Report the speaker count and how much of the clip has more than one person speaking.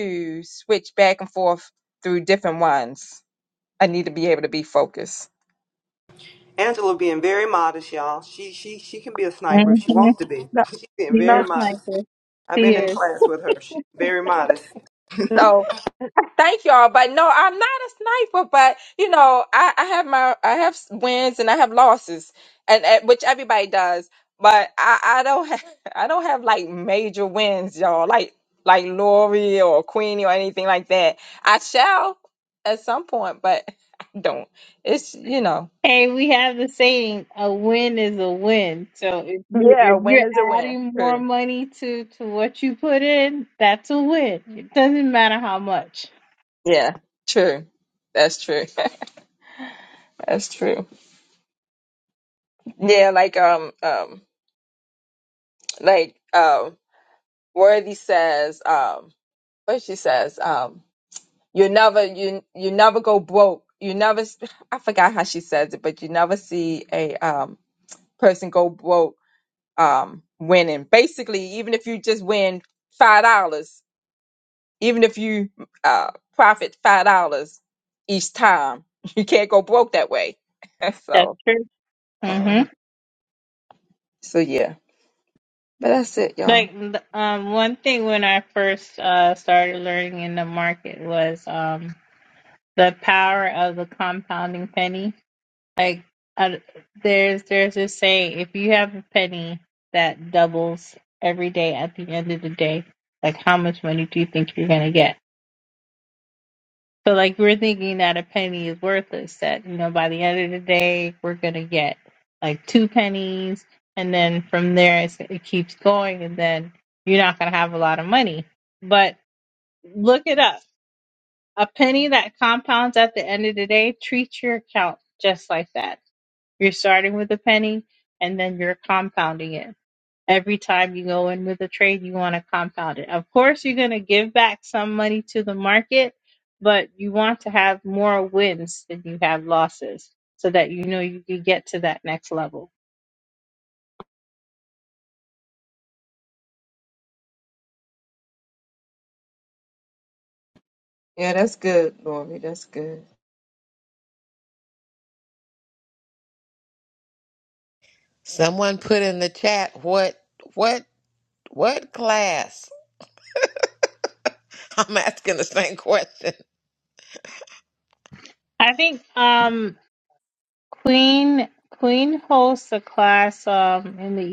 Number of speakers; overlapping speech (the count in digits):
4, about 2%